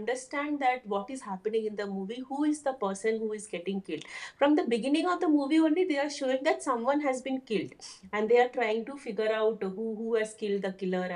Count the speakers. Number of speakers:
1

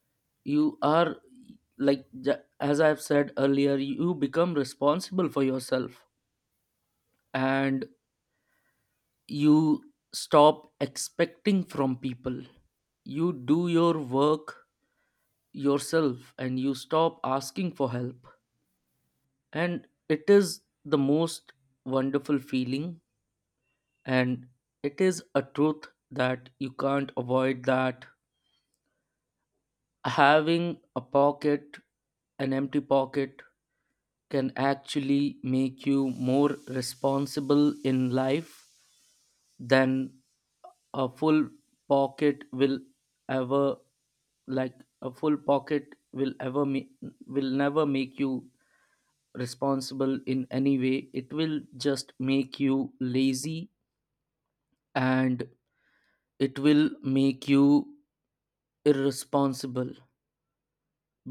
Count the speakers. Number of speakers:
1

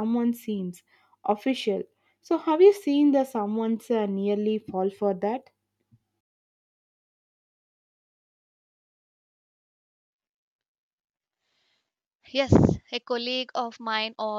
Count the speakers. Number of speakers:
2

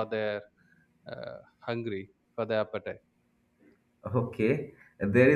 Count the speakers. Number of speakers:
2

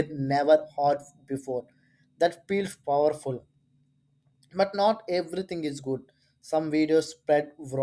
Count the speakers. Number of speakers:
1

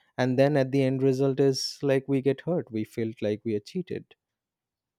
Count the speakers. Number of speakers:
1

